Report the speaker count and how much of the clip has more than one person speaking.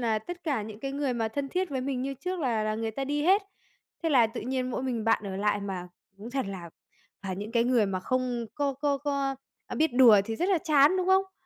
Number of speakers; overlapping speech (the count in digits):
1, no overlap